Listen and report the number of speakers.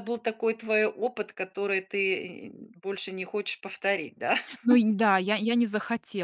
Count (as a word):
two